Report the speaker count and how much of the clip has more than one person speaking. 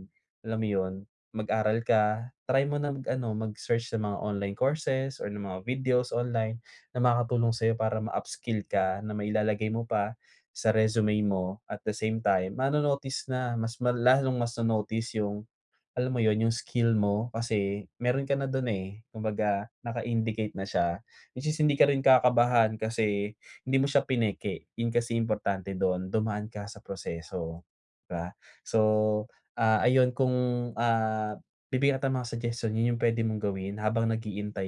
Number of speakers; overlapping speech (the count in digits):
1, no overlap